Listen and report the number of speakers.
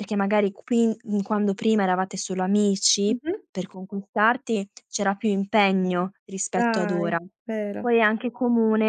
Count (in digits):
2